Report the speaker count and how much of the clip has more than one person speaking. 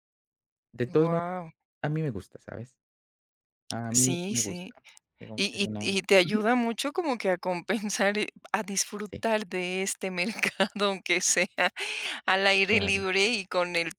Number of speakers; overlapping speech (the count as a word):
two, about 18%